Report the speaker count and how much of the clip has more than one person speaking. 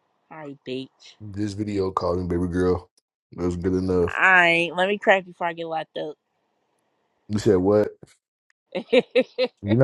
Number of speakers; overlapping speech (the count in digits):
2, about 1%